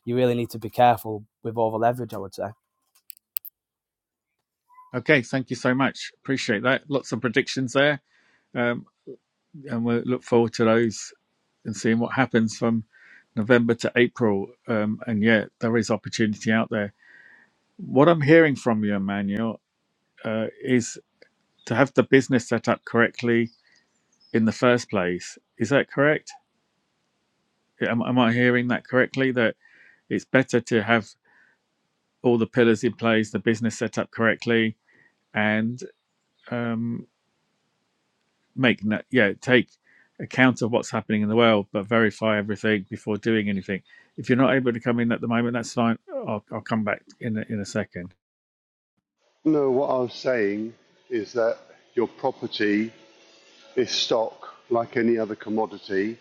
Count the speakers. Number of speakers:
three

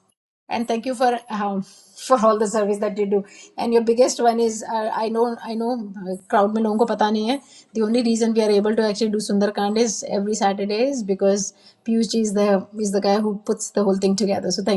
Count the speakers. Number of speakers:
one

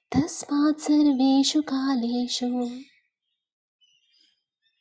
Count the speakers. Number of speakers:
one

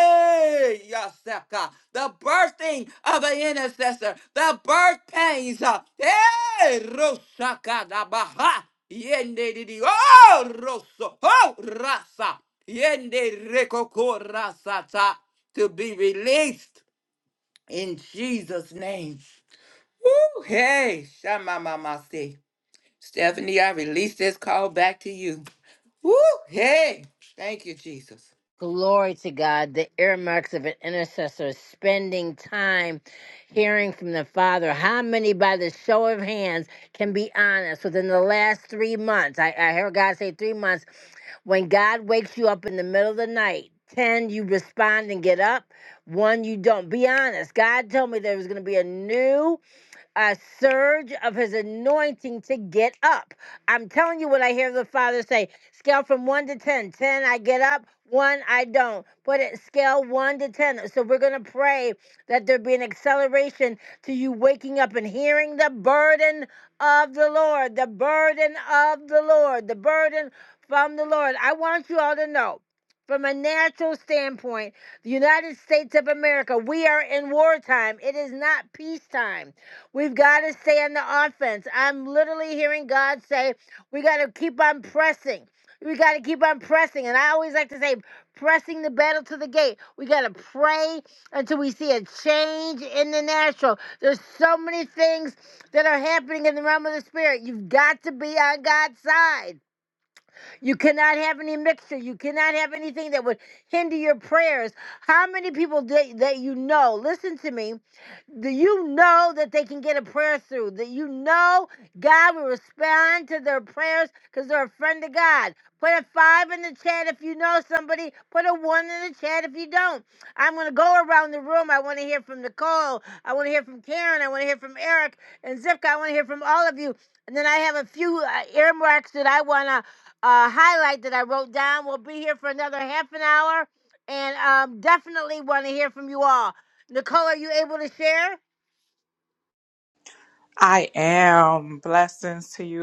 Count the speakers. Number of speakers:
three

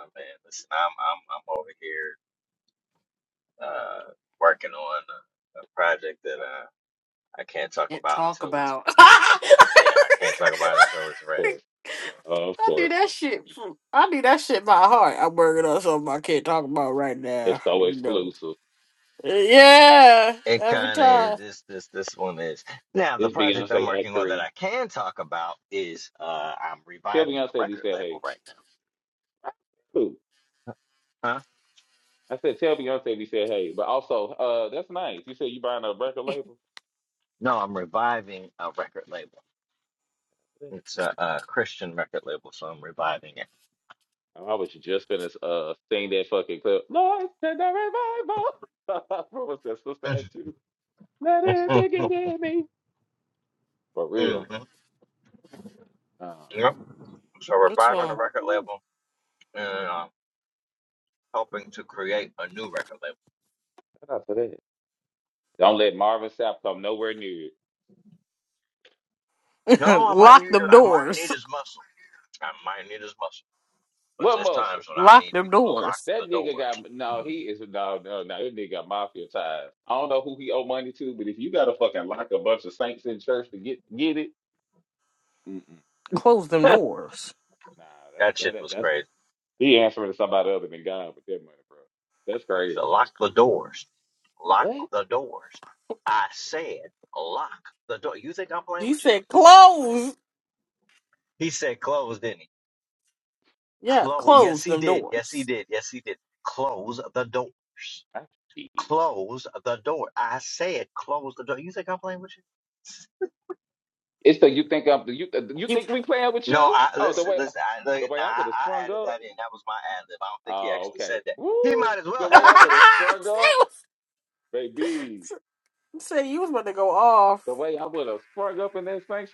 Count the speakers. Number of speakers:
three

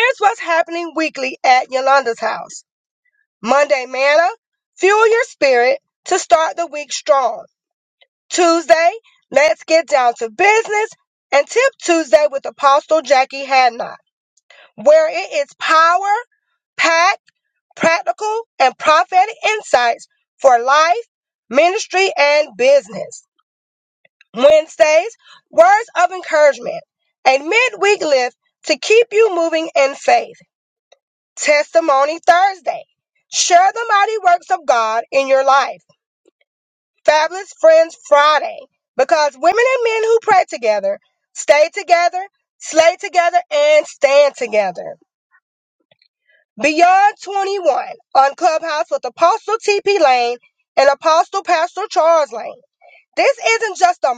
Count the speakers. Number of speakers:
one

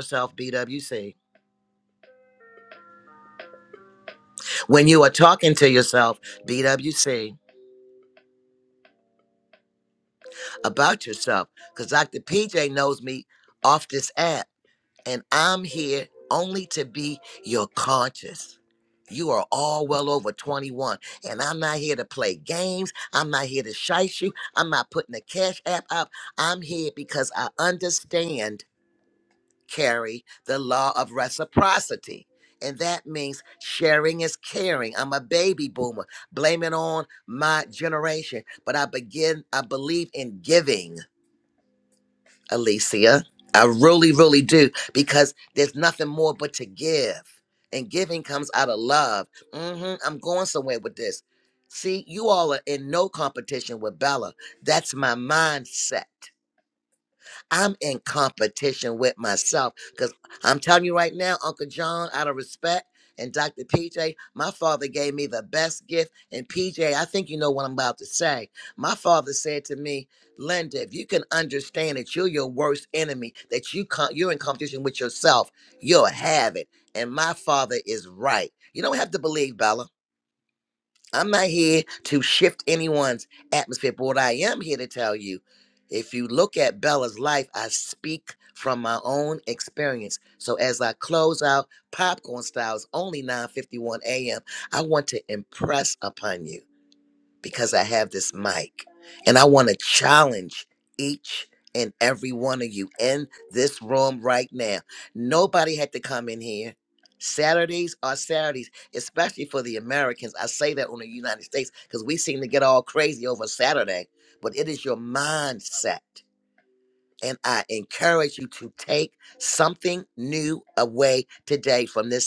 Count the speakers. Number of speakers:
one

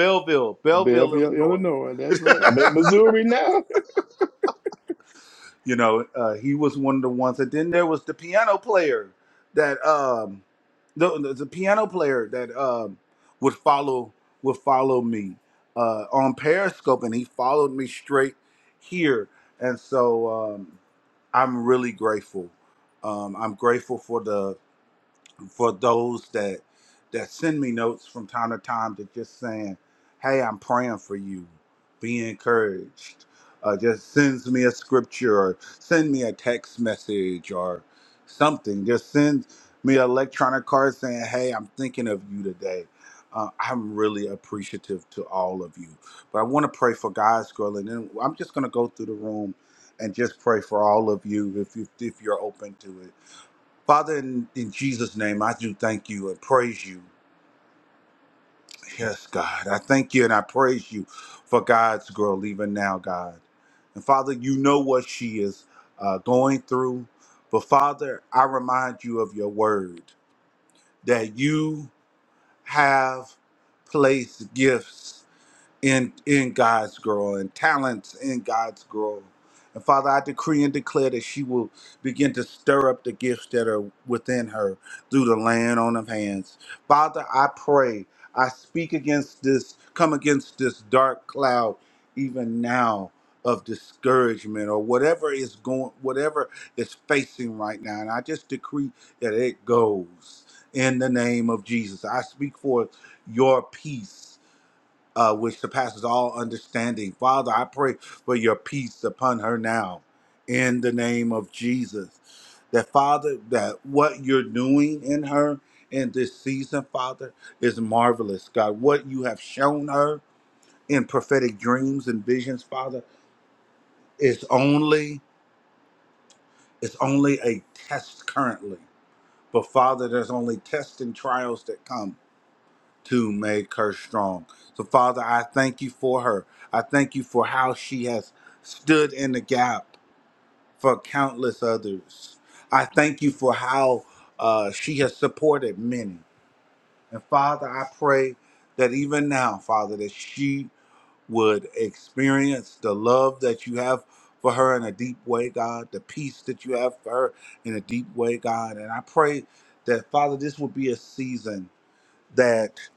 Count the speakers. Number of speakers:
two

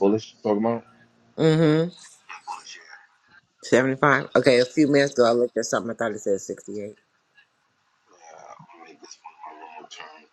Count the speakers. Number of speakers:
two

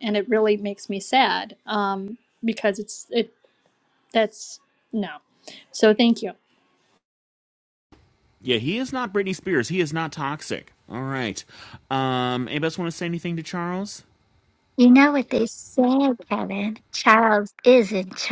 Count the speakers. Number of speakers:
three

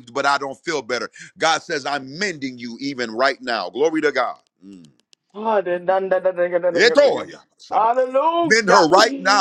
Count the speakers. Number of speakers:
two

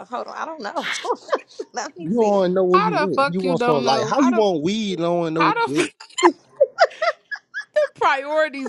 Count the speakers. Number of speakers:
three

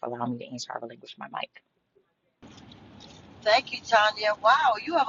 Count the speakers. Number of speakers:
two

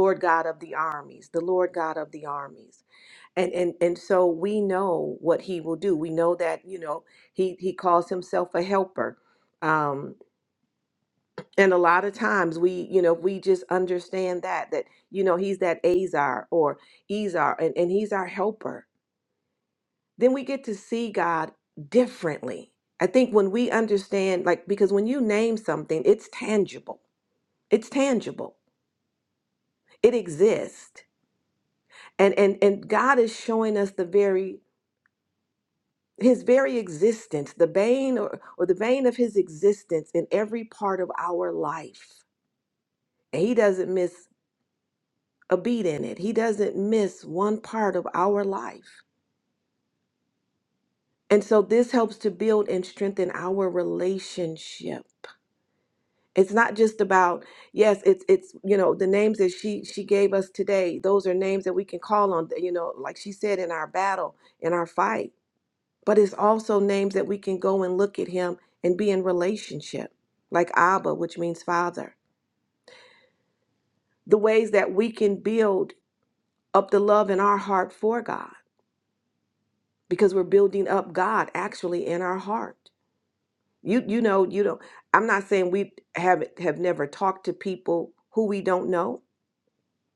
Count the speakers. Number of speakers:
one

